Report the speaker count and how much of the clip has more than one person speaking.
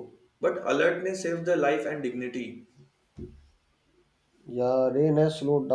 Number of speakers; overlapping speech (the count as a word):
two, no overlap